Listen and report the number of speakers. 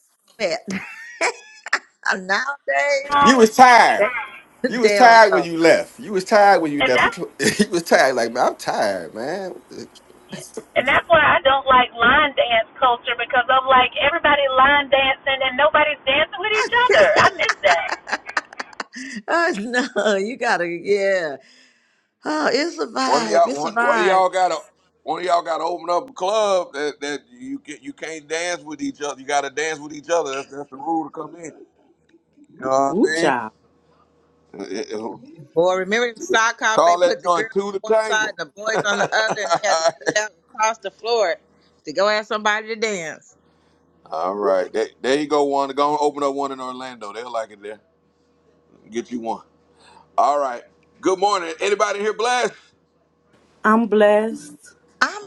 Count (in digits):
6